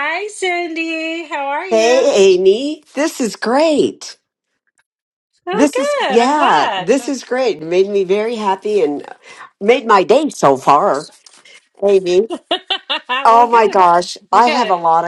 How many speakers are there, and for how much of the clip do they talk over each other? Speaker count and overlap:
2, about 19%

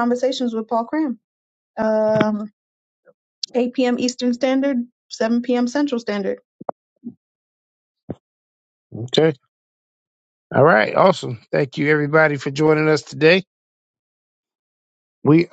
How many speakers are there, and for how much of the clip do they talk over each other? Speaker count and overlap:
2, no overlap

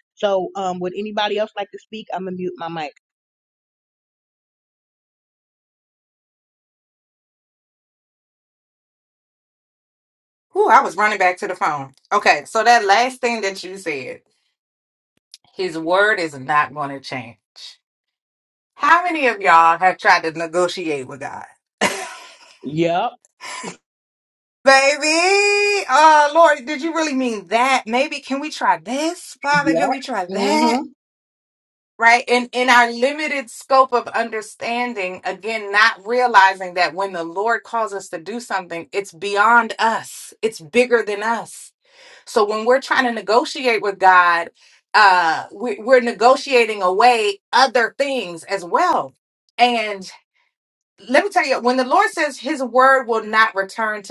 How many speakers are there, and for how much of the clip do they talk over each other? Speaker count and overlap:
2, about 2%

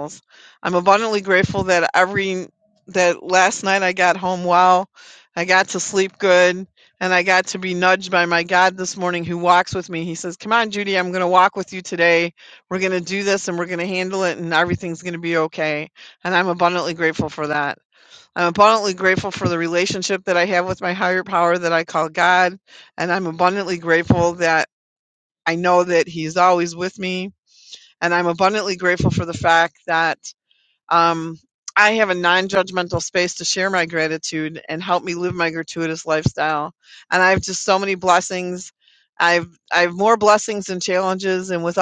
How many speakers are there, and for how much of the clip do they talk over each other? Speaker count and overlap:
1, no overlap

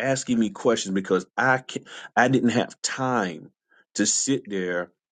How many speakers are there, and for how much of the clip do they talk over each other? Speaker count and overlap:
1, no overlap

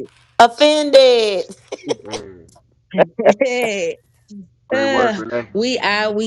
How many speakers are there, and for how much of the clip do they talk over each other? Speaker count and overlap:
3, about 8%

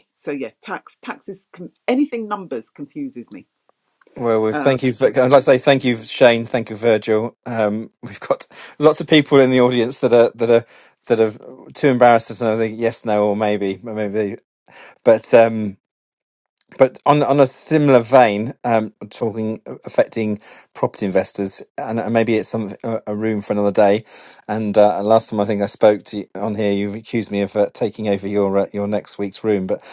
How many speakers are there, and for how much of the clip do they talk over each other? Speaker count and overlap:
2, about 1%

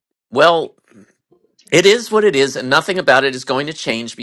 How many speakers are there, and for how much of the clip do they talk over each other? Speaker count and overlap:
1, no overlap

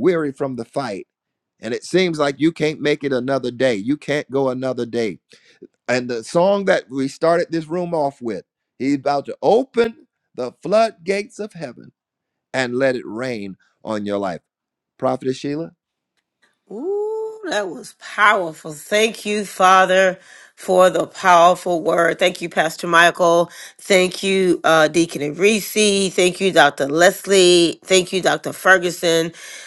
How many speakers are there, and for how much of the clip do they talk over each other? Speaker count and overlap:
2, no overlap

